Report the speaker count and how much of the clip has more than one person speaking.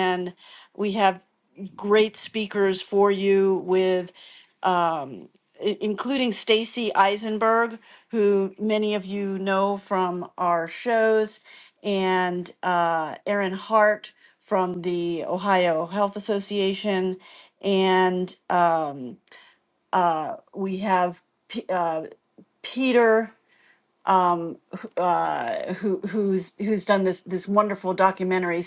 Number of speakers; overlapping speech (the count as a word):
one, no overlap